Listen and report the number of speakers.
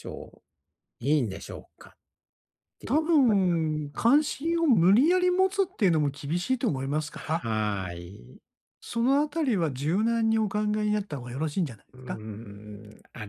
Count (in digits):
2